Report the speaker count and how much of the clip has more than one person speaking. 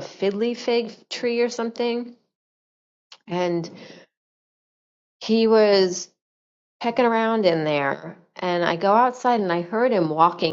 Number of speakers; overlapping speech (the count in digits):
1, no overlap